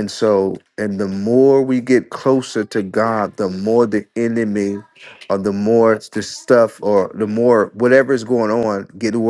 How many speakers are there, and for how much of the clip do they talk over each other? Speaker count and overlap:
1, no overlap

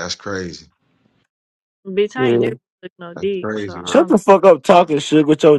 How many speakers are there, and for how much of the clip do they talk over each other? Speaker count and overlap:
3, about 24%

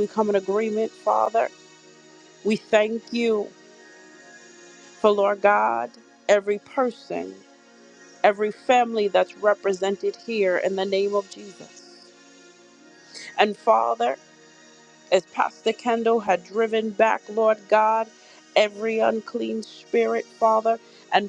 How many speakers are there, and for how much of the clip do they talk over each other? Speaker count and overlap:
1, no overlap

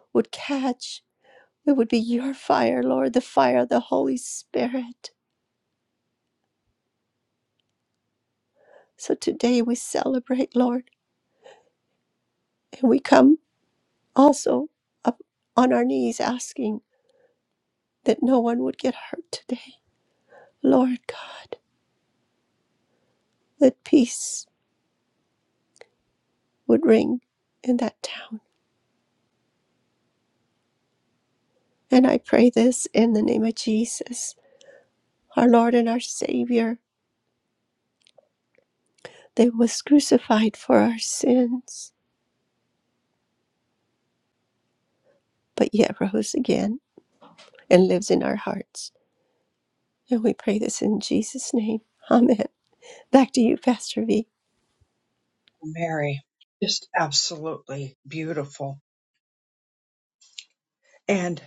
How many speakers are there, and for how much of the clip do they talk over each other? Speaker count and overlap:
2, no overlap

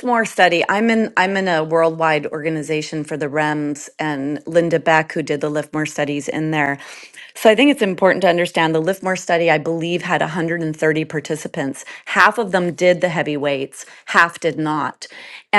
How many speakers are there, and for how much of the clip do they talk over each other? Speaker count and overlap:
1, no overlap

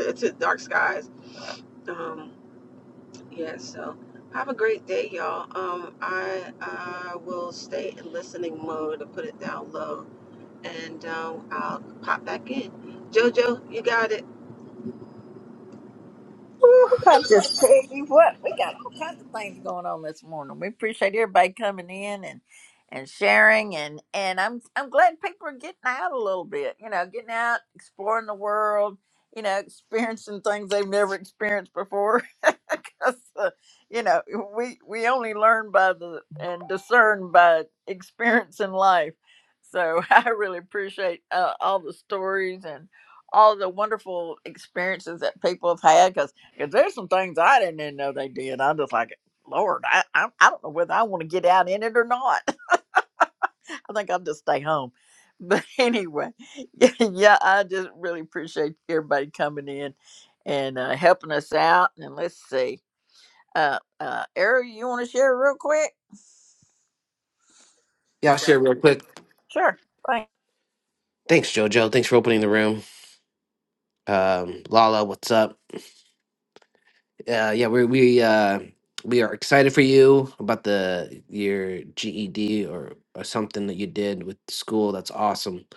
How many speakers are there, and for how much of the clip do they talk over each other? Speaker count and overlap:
3, no overlap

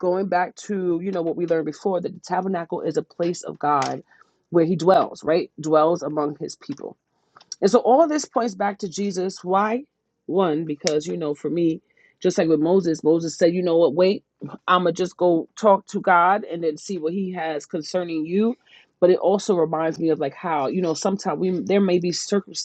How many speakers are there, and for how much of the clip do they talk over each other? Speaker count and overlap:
1, no overlap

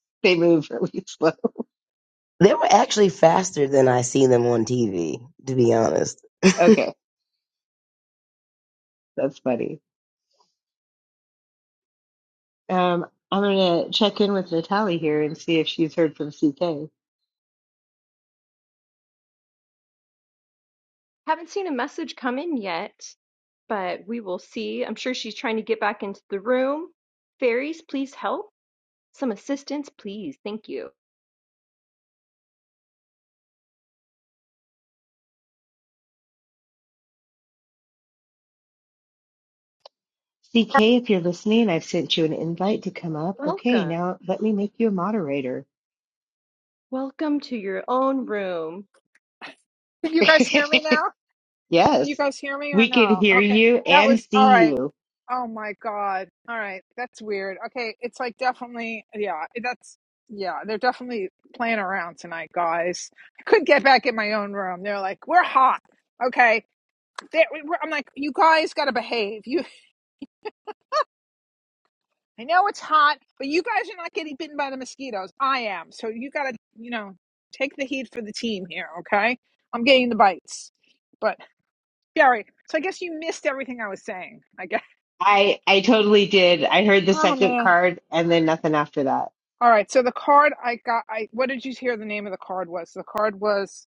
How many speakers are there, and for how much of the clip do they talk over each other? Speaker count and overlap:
4, about 3%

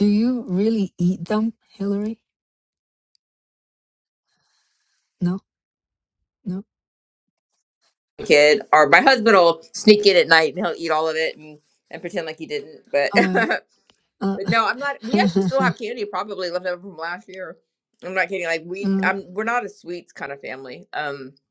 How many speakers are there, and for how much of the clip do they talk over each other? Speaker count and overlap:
2, about 2%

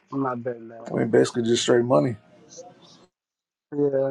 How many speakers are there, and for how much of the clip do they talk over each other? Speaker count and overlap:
2, about 1%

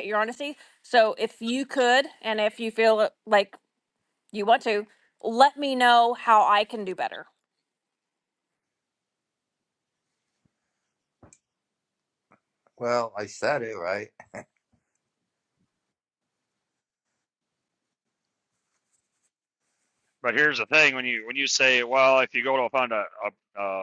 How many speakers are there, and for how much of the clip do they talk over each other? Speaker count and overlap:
3, no overlap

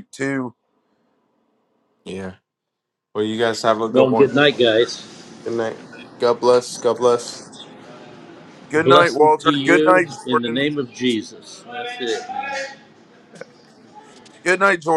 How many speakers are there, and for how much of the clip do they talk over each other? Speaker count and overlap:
3, about 15%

